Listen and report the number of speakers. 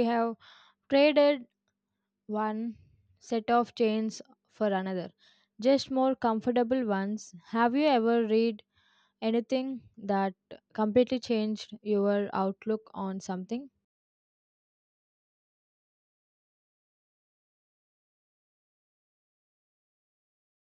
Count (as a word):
one